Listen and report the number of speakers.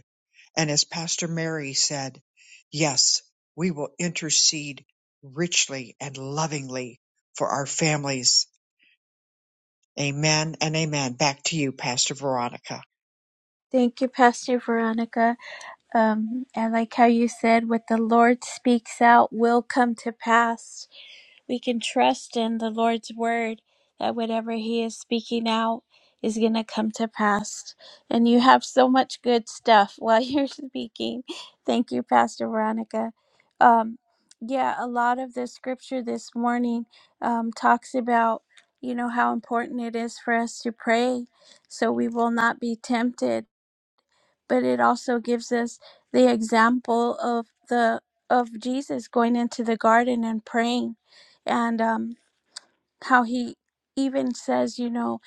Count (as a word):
two